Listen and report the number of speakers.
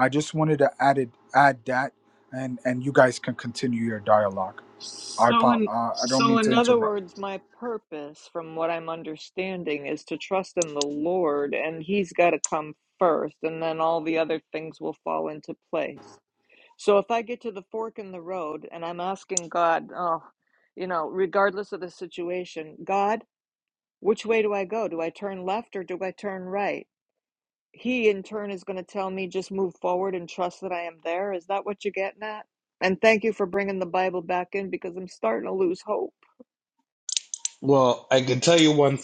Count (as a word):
three